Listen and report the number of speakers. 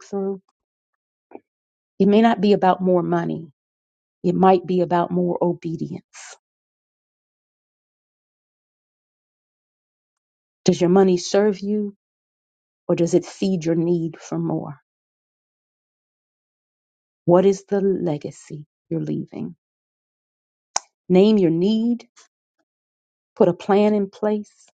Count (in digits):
1